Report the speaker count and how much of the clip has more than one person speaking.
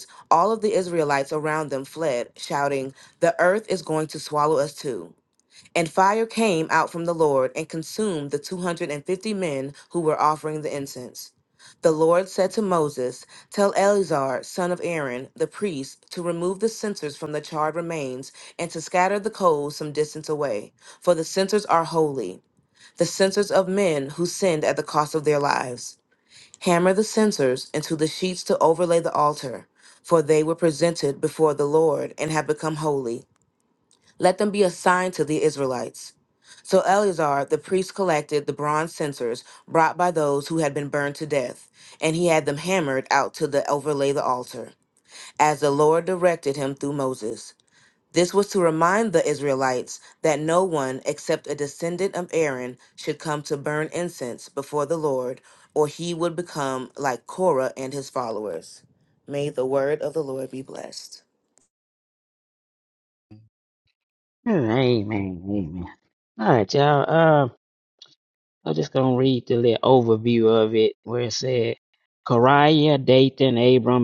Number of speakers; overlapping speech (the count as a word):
two, no overlap